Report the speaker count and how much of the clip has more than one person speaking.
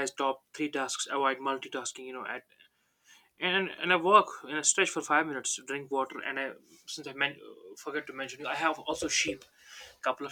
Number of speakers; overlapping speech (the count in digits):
1, no overlap